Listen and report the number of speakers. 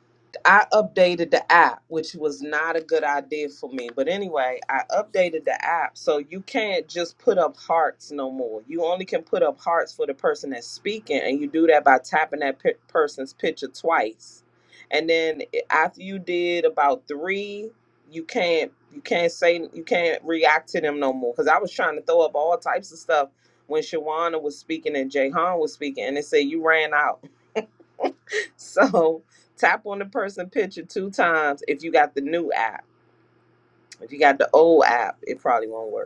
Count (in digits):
1